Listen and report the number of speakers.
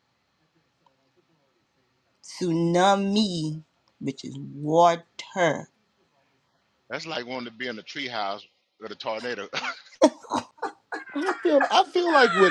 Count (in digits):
3